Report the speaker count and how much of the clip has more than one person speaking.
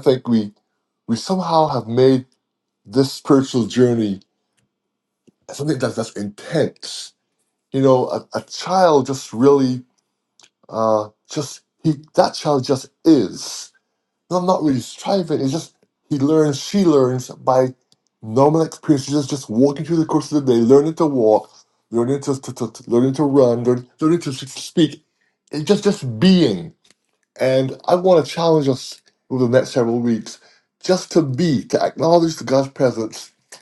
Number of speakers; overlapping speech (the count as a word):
one, no overlap